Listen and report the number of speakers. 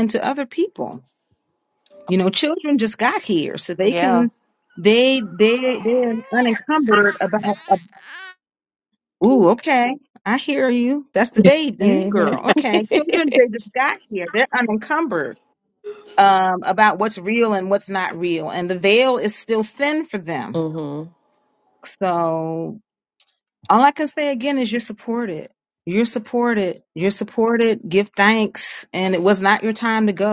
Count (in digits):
2